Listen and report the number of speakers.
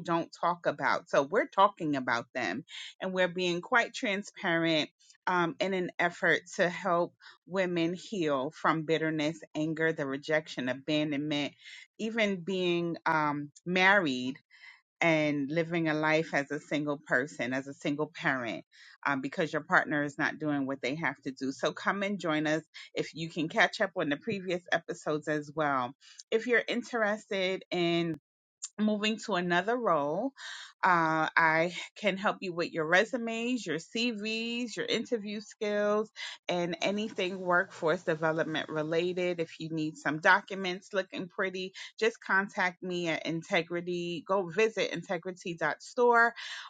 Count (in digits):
1